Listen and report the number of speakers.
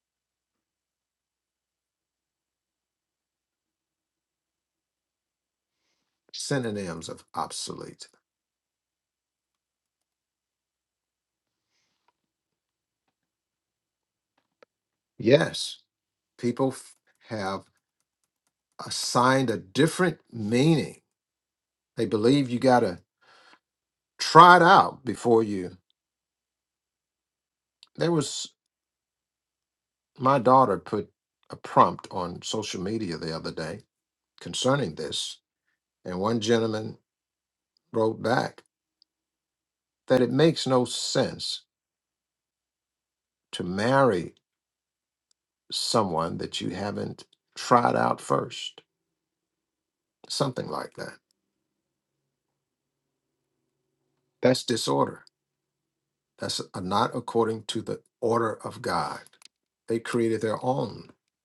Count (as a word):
one